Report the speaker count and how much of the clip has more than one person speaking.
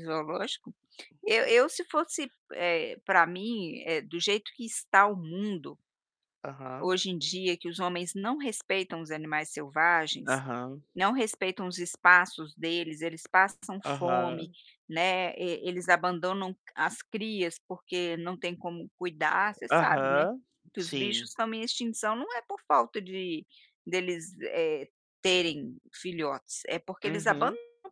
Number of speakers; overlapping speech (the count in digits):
2, about 8%